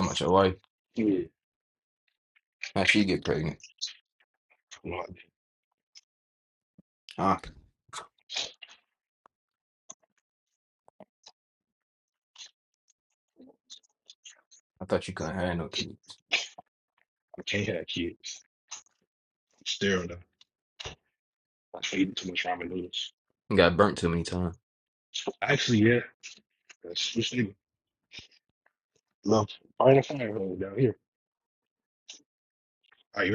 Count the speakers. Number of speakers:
2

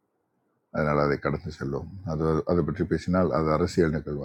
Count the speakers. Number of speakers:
1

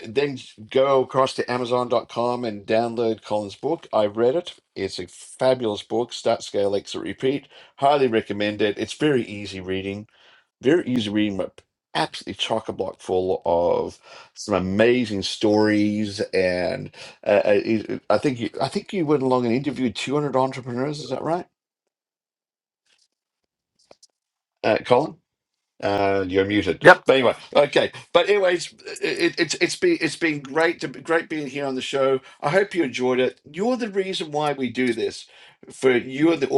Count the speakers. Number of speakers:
1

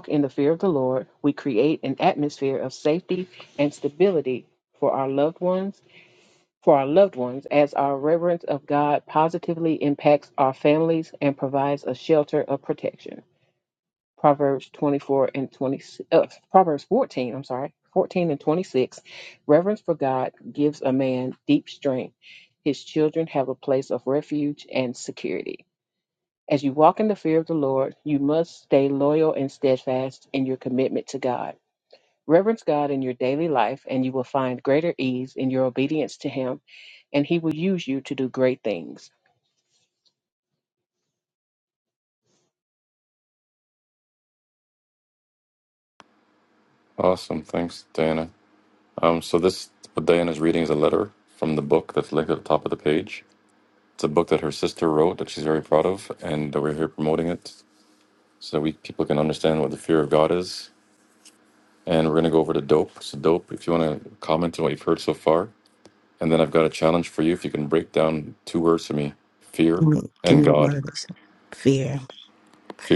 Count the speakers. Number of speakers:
3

